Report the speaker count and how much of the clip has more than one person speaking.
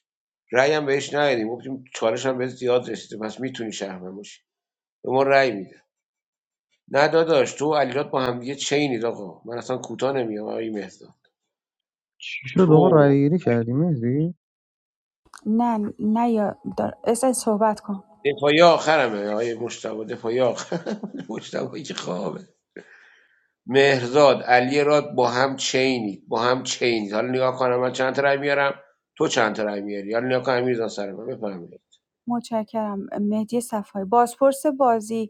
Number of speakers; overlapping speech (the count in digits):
3, about 2%